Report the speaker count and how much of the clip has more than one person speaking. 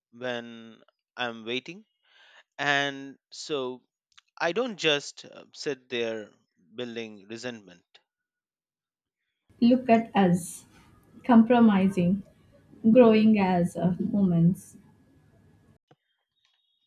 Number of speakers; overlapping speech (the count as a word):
two, no overlap